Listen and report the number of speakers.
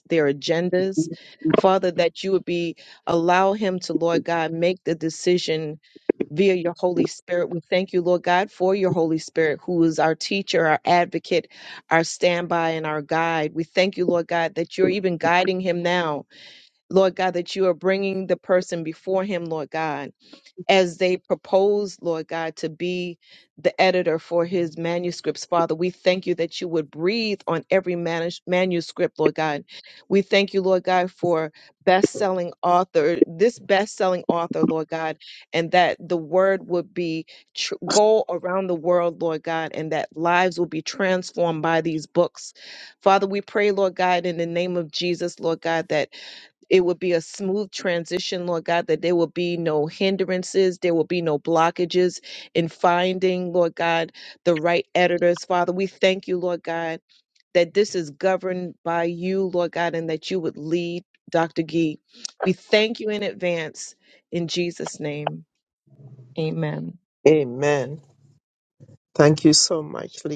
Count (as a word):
two